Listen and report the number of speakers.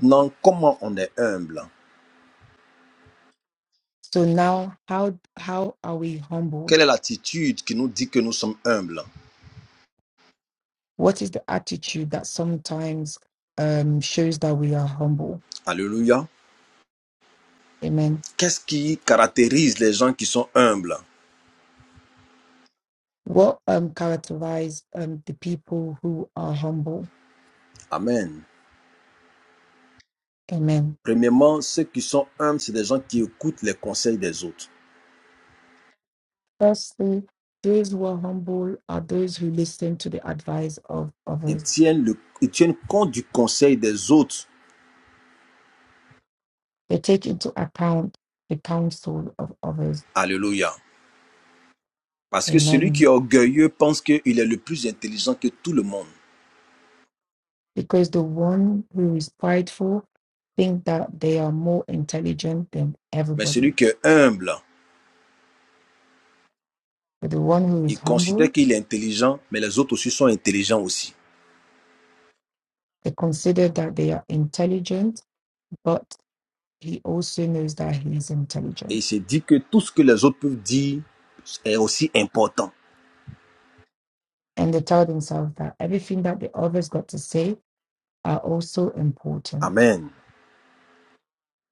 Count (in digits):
2